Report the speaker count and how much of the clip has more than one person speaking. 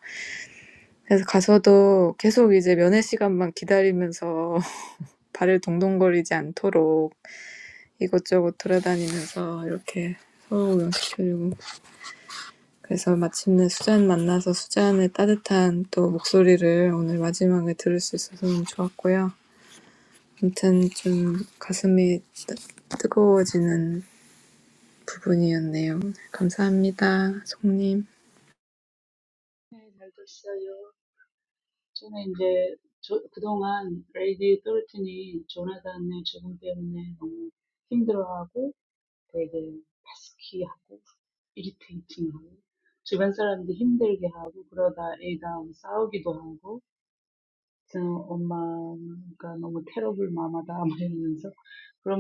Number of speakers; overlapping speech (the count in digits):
2, no overlap